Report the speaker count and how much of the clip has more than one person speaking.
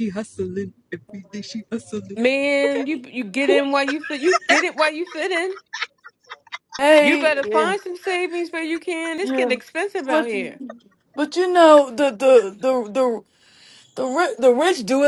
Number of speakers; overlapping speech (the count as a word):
three, about 11%